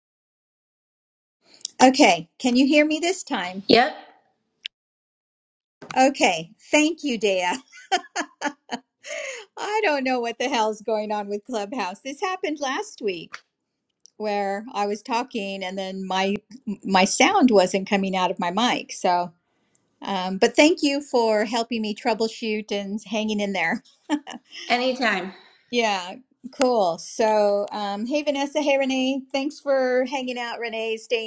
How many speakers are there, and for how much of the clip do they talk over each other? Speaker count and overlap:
two, no overlap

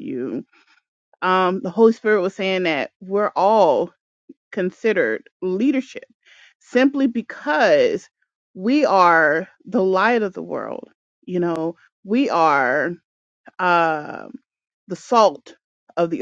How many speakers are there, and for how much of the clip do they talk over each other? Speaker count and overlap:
one, no overlap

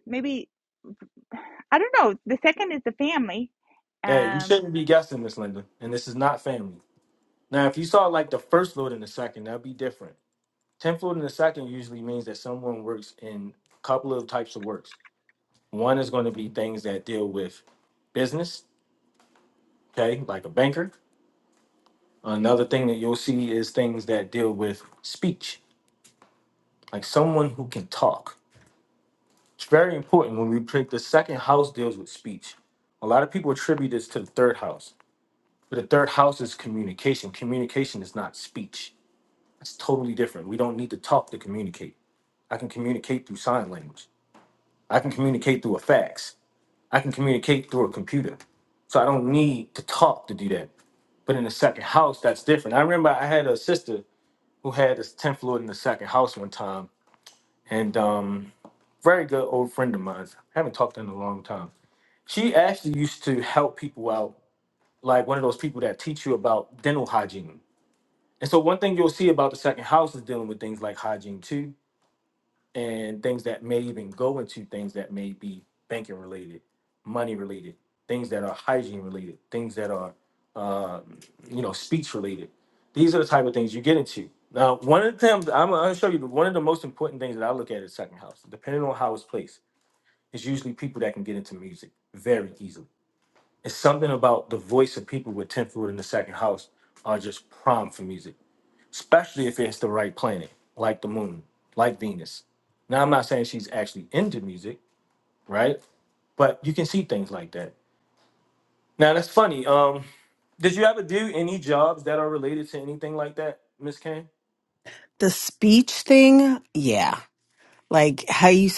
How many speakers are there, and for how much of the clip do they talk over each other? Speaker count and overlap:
three, under 1%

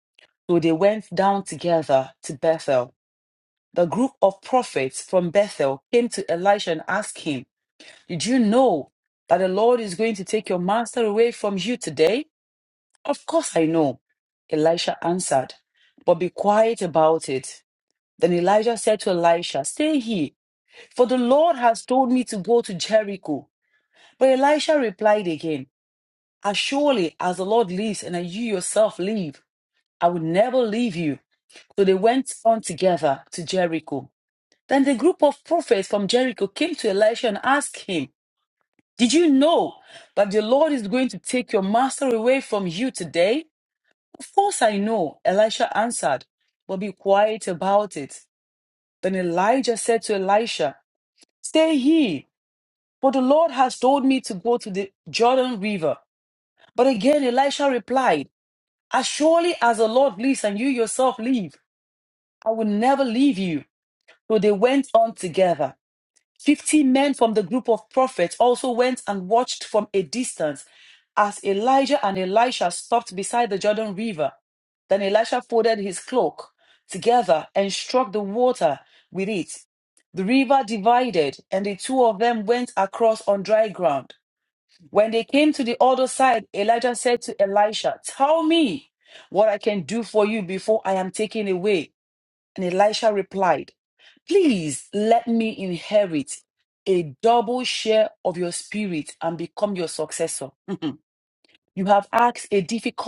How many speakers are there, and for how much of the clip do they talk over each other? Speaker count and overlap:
one, no overlap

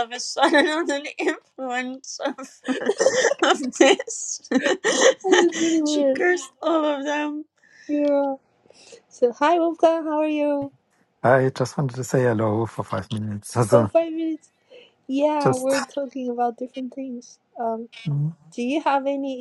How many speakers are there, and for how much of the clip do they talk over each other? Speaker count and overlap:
three, about 4%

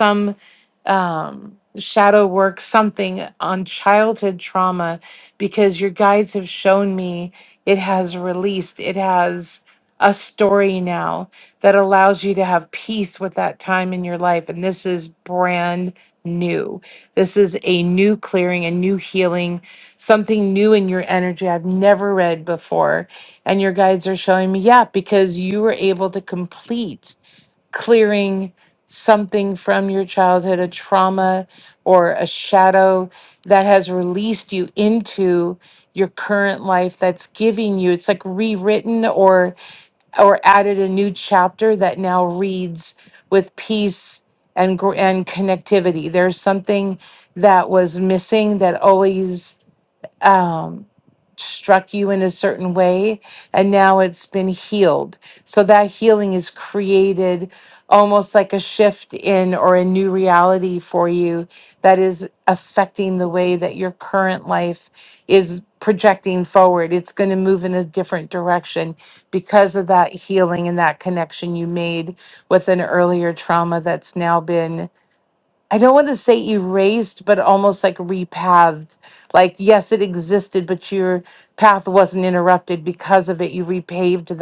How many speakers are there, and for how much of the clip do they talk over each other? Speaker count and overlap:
one, no overlap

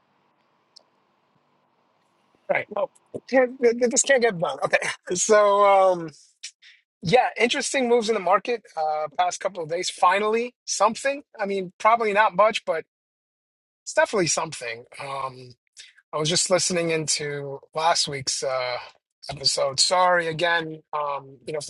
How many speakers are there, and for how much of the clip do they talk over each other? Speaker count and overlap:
one, no overlap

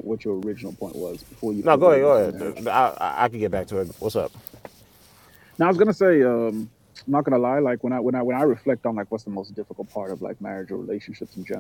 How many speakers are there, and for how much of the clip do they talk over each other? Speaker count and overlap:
two, about 8%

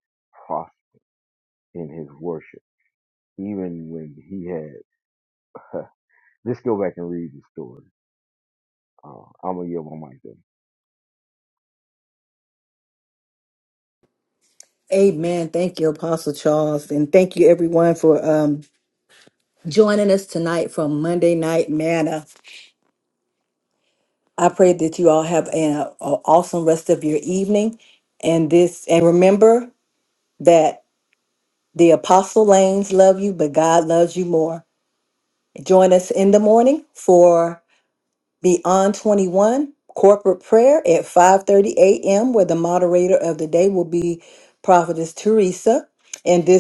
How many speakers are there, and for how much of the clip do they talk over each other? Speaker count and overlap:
two, no overlap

